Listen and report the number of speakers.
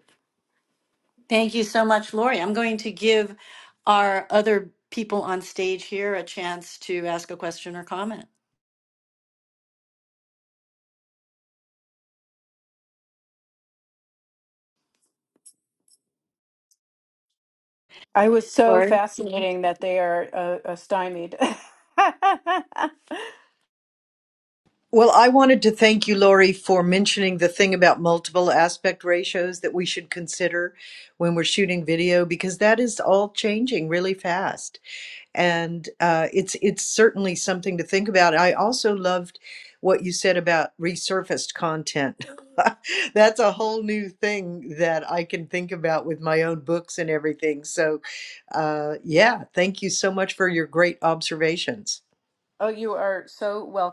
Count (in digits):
3